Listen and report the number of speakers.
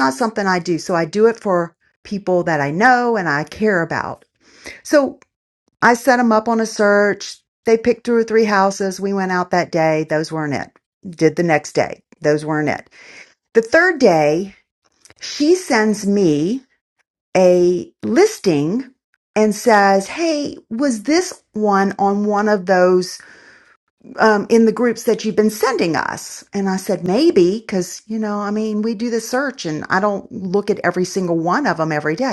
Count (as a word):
one